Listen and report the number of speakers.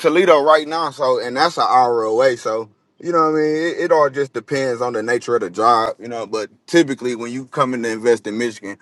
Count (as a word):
one